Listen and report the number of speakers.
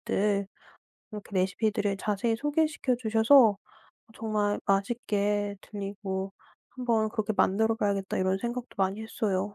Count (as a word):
one